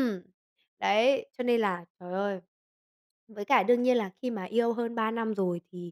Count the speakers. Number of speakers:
one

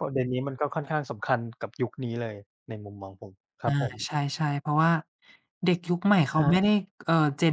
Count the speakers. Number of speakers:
two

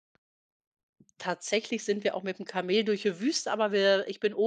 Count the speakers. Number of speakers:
one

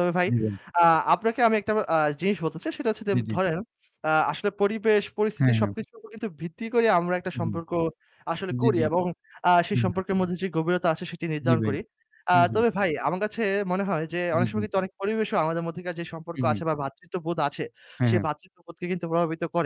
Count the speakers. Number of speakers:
two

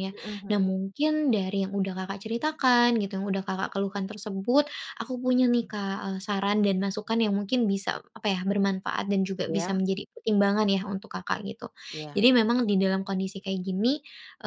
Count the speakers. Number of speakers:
two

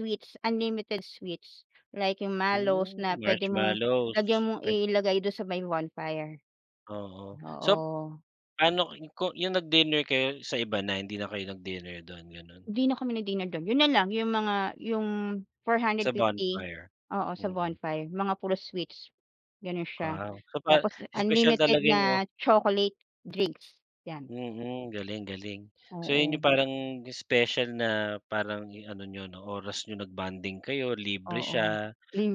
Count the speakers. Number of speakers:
two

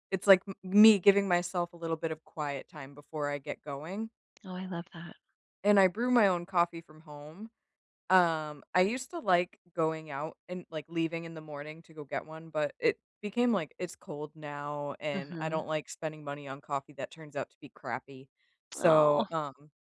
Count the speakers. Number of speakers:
two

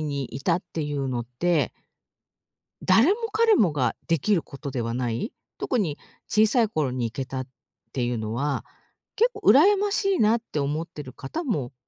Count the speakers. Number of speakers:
one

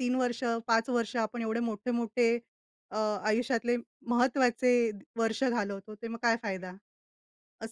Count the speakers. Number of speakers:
one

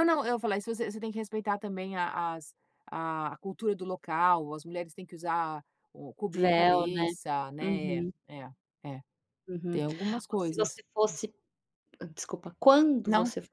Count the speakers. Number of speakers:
two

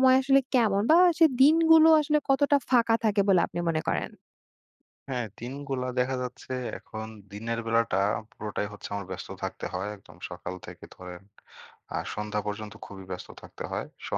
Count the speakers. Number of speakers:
two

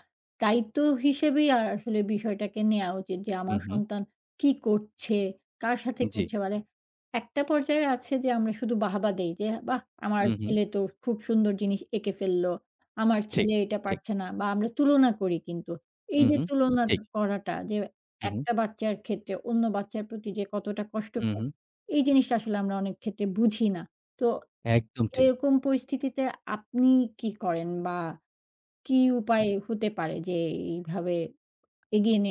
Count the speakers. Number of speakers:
two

